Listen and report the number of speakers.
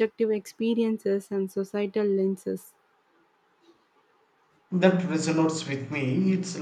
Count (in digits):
2